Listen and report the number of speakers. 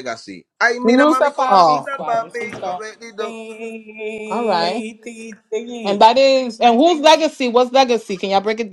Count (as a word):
three